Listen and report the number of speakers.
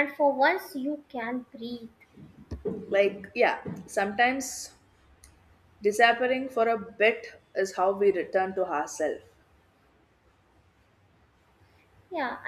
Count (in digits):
2